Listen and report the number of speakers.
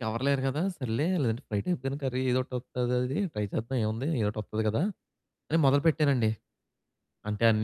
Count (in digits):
1